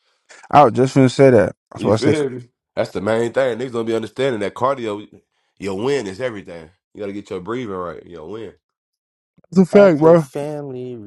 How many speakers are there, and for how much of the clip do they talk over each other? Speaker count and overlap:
3, about 9%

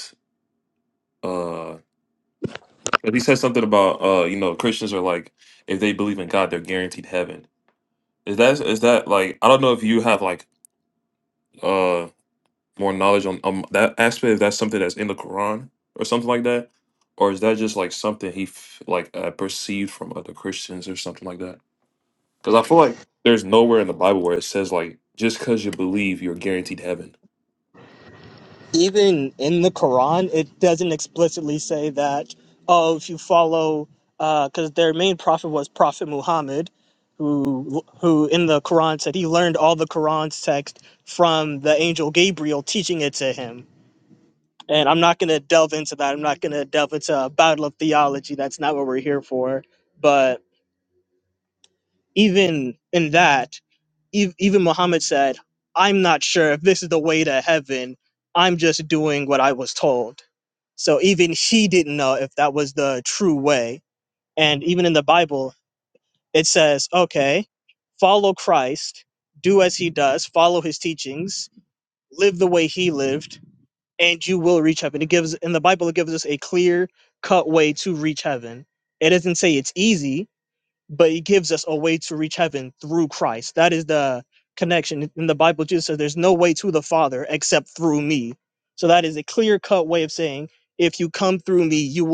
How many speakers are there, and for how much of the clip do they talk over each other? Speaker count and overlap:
2, no overlap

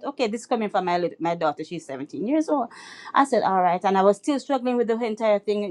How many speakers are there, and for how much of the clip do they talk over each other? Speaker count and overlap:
1, no overlap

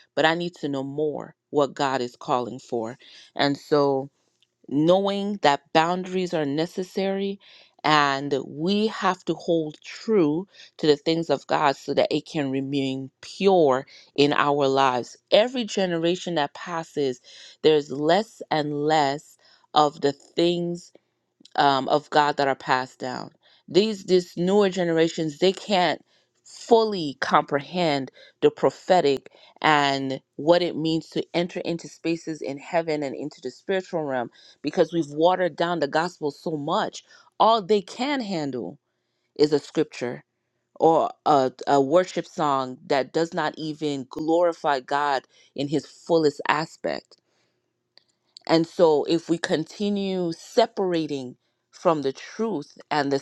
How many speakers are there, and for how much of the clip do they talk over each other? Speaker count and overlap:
1, no overlap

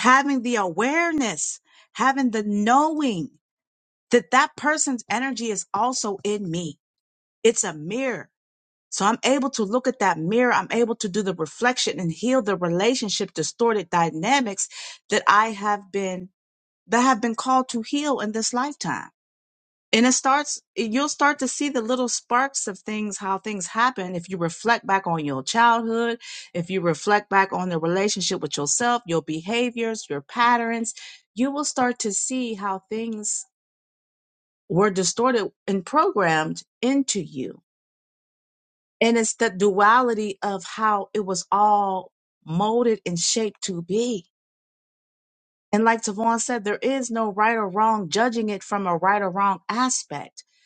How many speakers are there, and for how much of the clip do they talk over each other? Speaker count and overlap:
1, no overlap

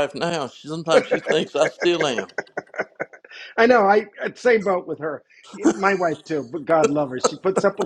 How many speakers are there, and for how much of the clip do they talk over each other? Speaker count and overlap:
2, no overlap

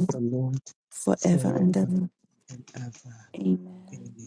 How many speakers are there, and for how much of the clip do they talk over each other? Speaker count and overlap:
2, about 21%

